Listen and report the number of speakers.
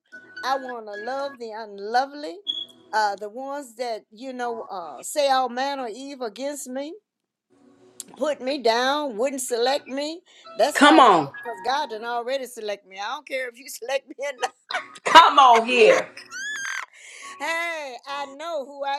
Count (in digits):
2